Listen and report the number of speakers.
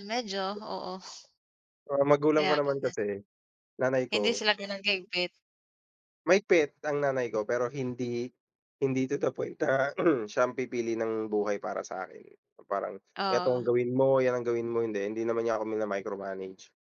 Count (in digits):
2